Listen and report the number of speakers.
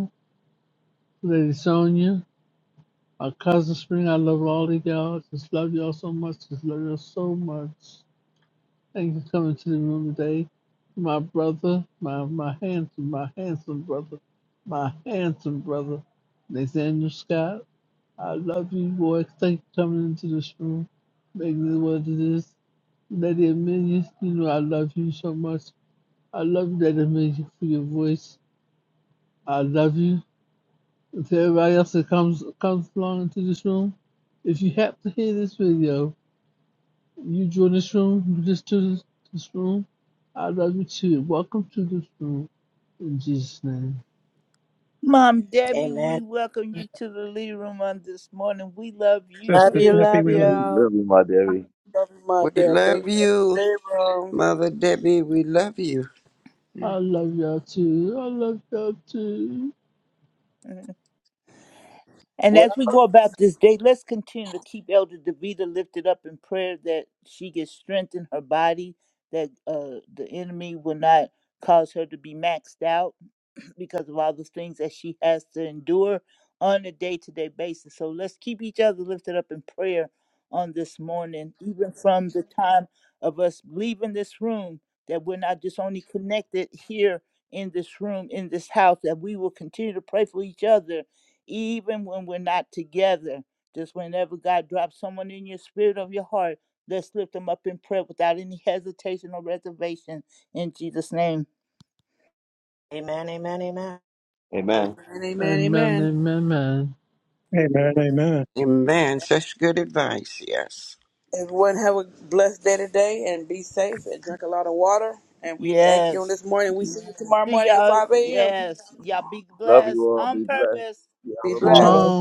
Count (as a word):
seven